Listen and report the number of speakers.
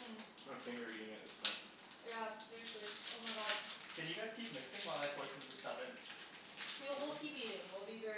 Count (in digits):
3